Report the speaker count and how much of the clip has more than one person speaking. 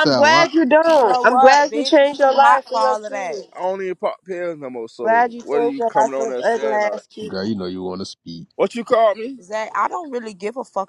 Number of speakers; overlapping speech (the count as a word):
four, about 46%